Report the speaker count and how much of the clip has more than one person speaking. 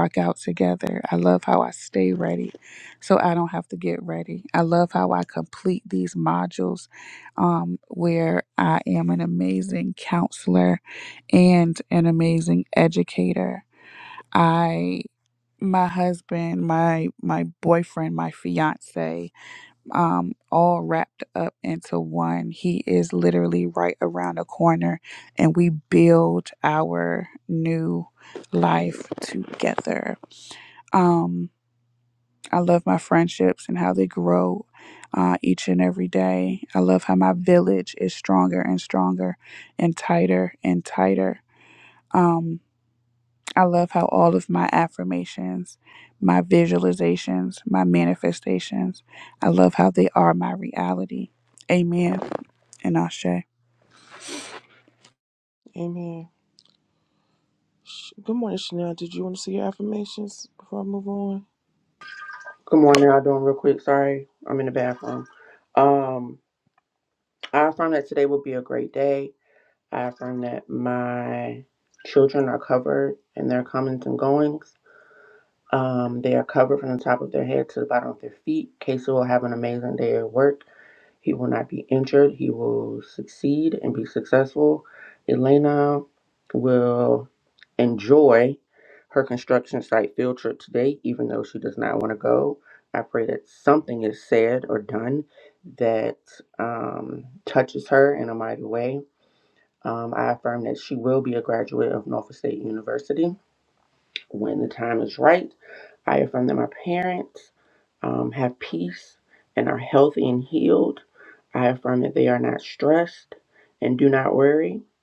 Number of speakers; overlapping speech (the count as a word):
three, no overlap